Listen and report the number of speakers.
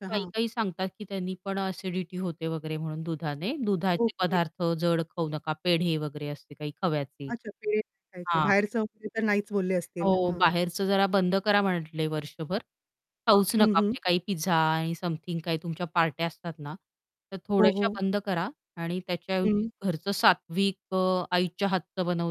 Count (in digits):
2